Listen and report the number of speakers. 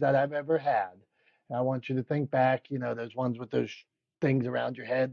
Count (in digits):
1